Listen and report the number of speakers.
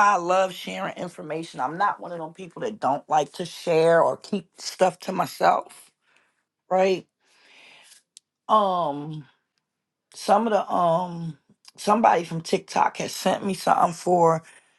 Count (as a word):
one